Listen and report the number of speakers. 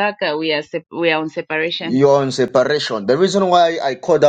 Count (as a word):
two